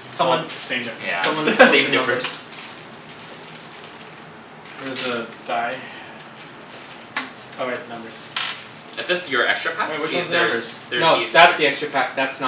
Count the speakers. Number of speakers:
3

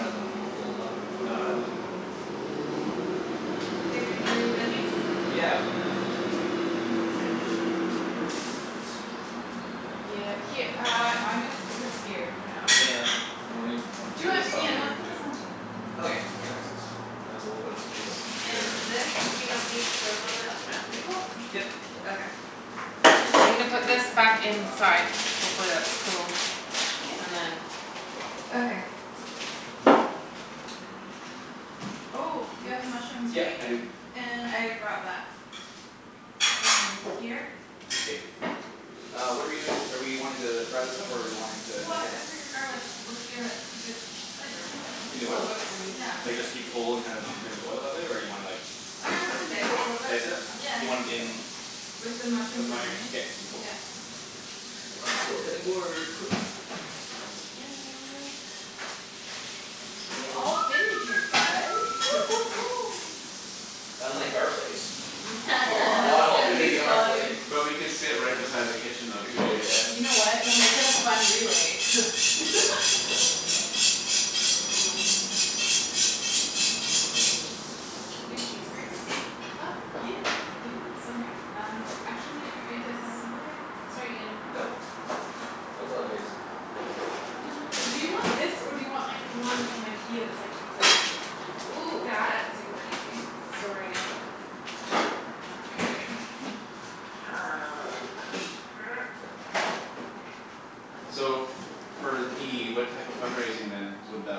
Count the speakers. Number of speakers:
4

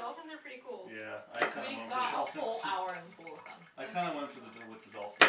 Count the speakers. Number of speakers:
3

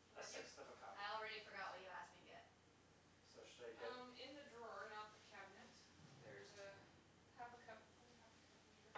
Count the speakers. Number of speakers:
3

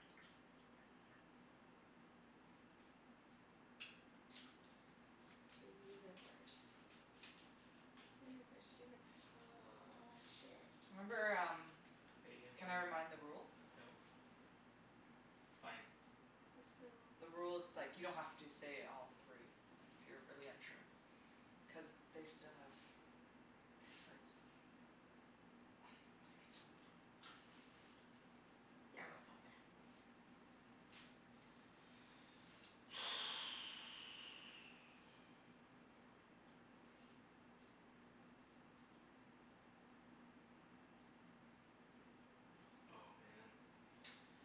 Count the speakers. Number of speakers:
3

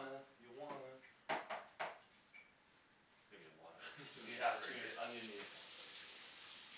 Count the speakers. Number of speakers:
2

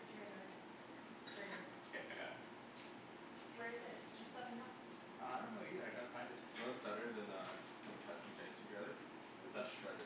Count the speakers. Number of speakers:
3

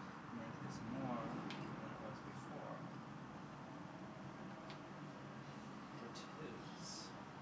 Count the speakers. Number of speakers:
1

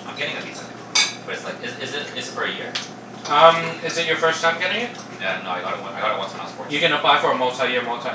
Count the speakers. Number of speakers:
2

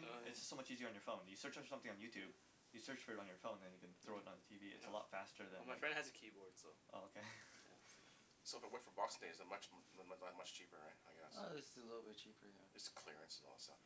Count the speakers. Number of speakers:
4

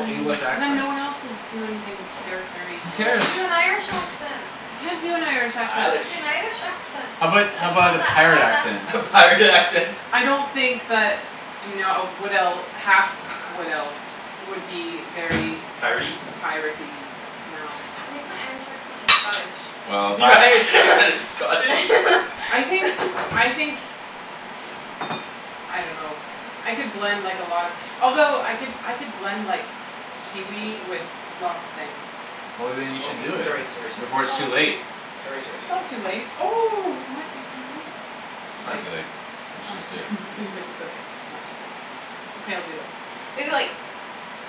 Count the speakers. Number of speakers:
4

